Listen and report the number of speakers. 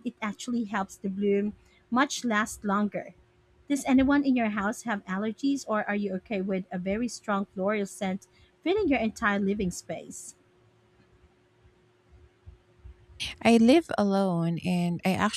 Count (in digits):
2